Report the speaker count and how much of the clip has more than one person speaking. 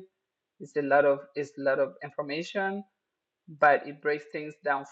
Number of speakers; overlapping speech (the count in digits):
1, no overlap